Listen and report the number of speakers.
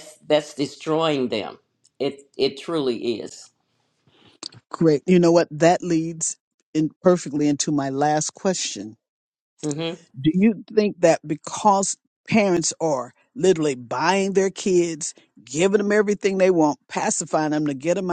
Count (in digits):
2